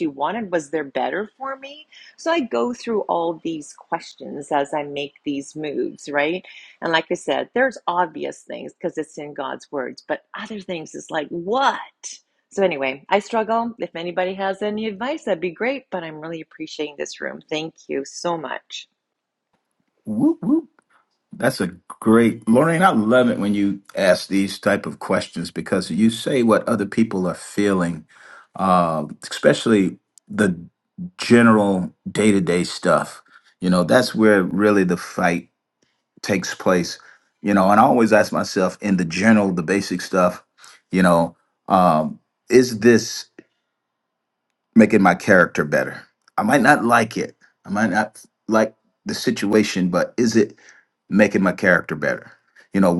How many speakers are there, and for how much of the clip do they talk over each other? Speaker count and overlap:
2, no overlap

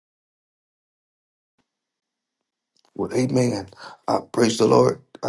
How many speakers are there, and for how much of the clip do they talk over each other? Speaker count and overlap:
1, no overlap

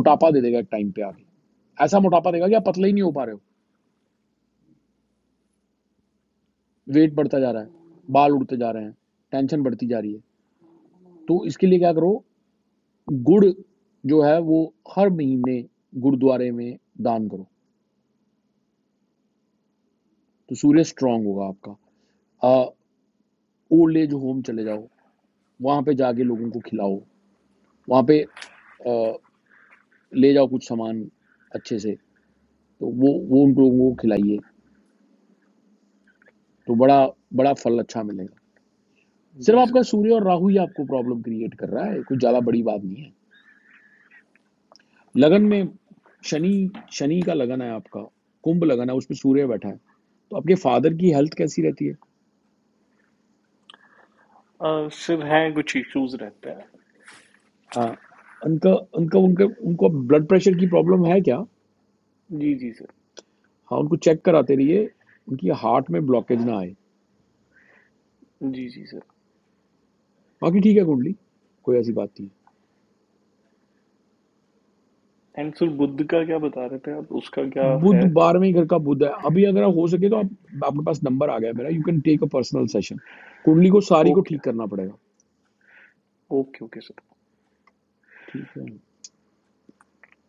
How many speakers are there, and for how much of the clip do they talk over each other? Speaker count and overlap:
2, about 1%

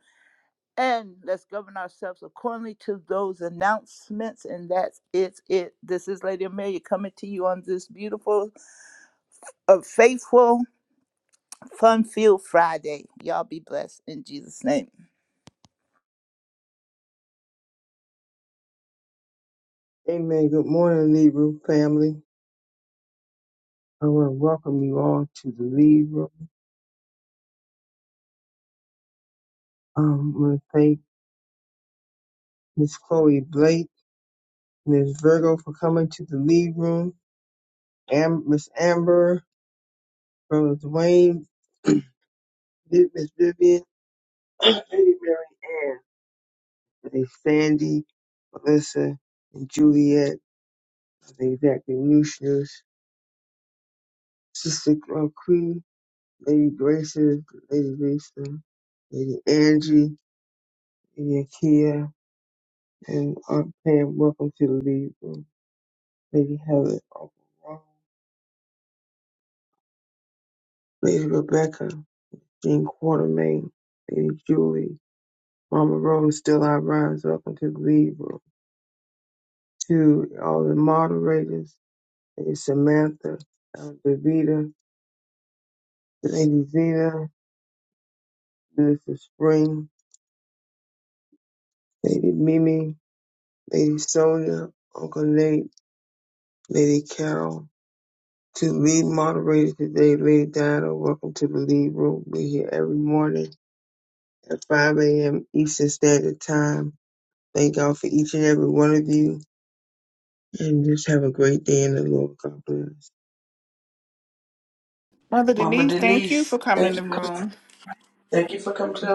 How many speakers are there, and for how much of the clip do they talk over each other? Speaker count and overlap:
4, about 1%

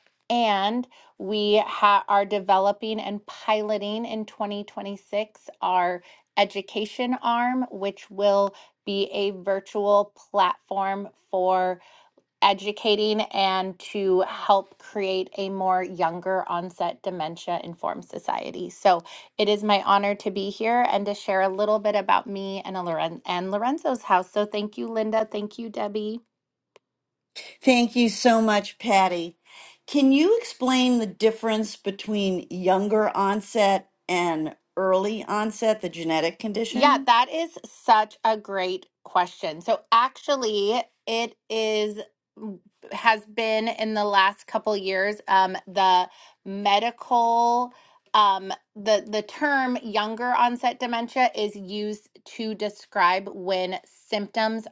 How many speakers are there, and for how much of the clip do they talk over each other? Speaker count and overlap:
2, about 1%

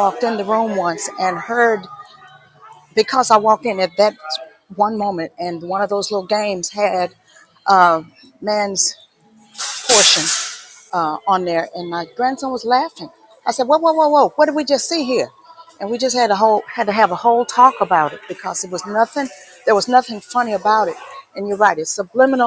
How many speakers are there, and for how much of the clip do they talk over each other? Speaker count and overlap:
1, no overlap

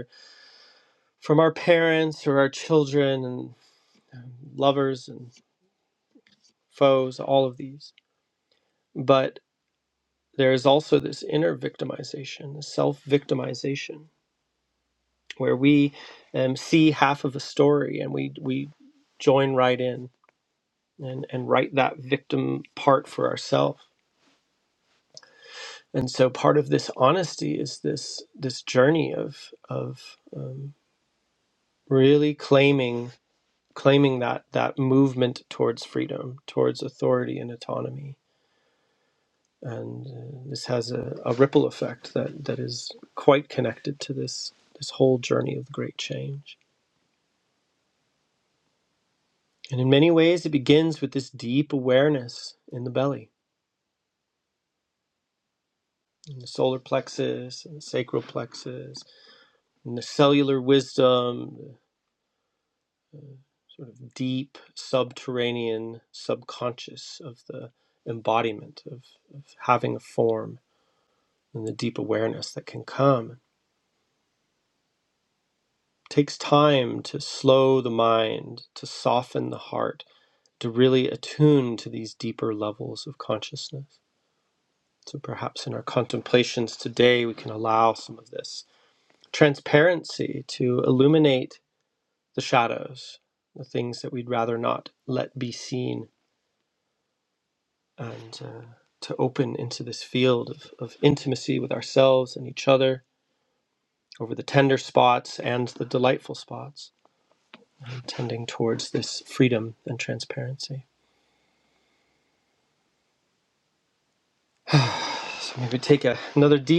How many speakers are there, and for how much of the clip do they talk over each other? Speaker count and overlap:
1, no overlap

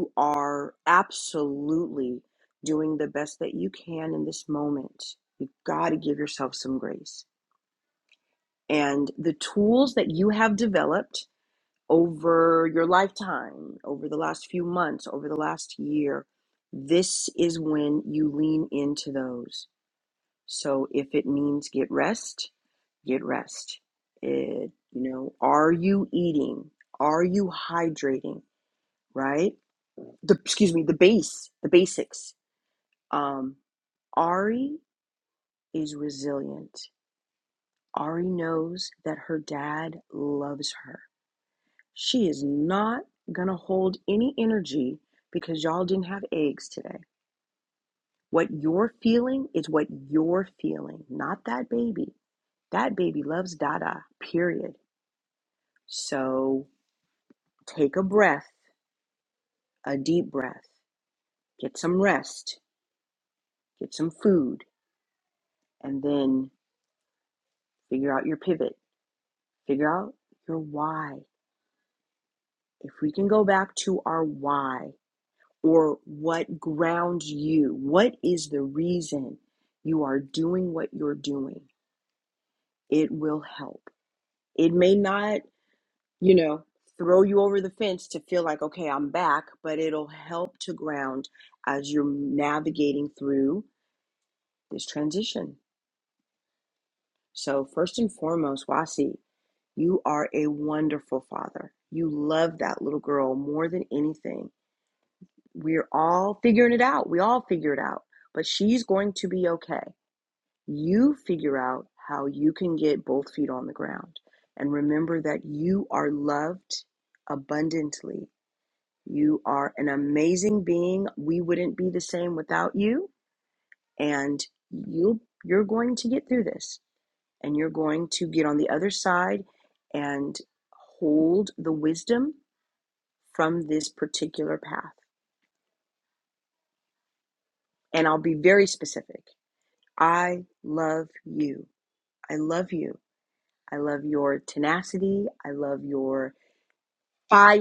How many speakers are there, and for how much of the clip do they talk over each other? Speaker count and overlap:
1, no overlap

